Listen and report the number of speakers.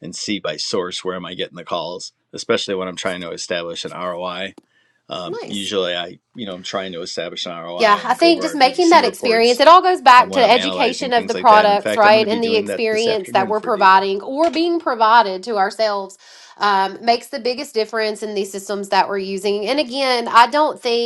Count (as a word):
two